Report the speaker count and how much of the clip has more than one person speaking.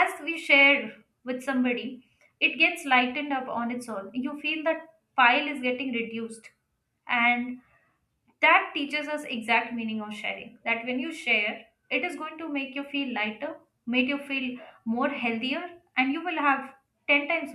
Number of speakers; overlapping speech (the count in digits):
1, no overlap